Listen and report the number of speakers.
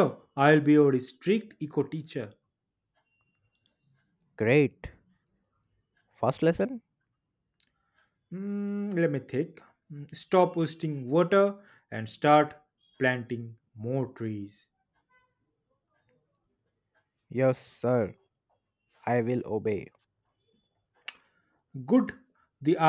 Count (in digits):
2